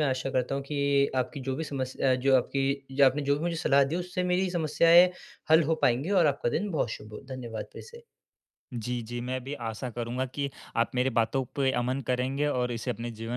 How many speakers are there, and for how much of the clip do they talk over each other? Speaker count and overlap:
2, no overlap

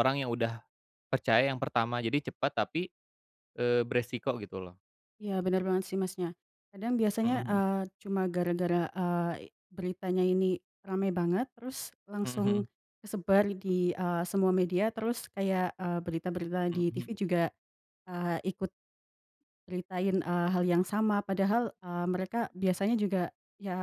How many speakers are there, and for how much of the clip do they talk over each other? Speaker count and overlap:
2, about 4%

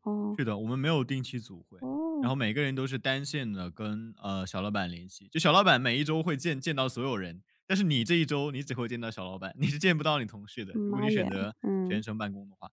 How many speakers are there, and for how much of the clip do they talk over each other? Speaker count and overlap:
2, about 8%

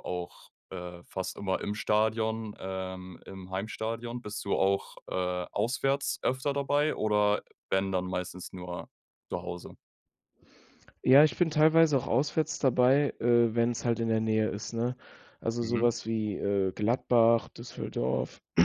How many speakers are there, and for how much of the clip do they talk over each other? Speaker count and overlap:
2, about 1%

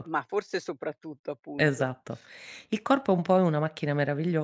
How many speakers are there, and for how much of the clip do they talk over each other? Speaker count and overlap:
2, about 9%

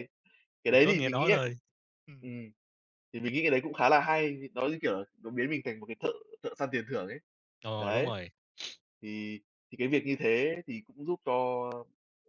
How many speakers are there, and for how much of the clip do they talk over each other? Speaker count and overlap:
2, about 8%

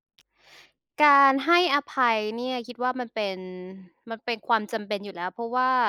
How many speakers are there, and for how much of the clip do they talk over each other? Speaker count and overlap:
1, no overlap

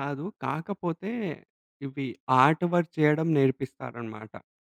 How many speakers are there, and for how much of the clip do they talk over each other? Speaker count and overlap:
1, no overlap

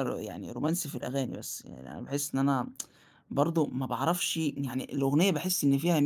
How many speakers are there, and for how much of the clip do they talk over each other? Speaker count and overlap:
1, no overlap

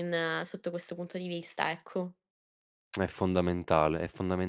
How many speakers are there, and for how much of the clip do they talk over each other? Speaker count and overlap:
2, no overlap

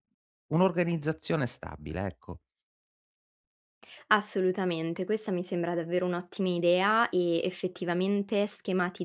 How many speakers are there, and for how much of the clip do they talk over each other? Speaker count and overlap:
2, no overlap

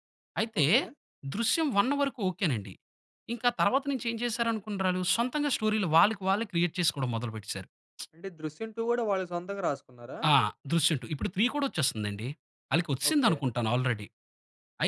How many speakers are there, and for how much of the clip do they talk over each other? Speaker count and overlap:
2, about 3%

